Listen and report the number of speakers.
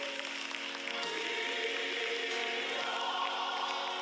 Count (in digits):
0